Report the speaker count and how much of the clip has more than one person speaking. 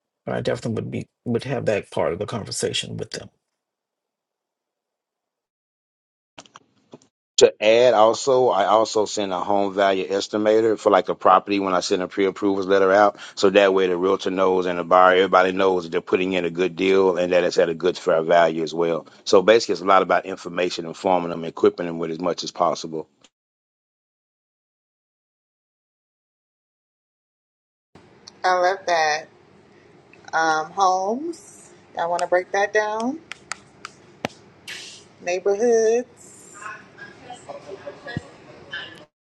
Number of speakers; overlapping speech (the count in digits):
3, no overlap